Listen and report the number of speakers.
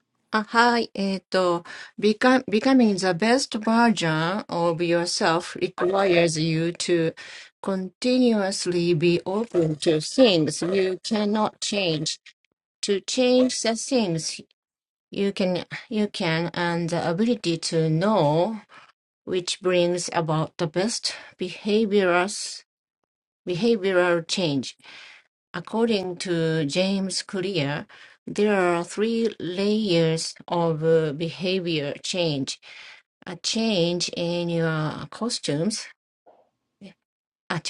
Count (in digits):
1